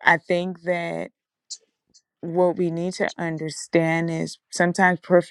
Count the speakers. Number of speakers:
1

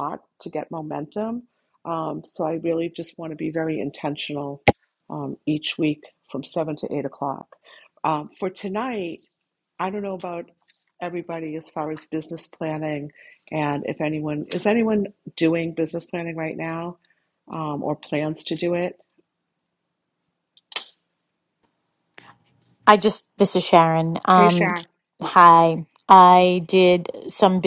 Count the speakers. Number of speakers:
2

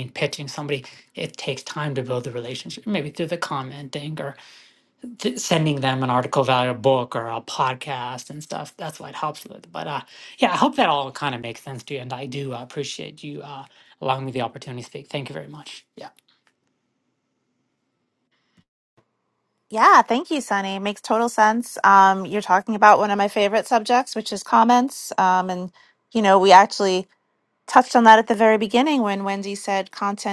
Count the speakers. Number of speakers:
2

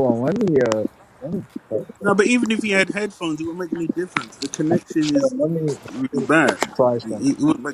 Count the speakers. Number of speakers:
2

